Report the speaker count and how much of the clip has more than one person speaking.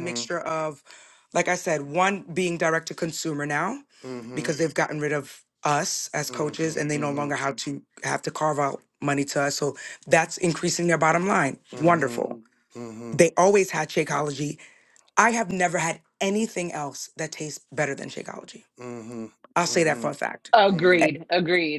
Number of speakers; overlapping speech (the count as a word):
three, about 13%